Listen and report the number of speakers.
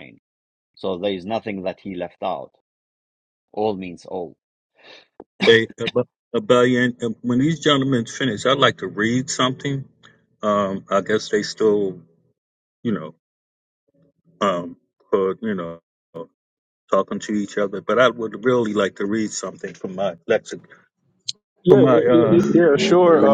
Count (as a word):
three